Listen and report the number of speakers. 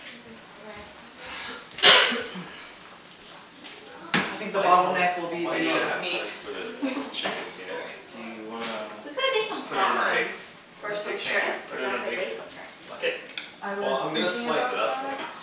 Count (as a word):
four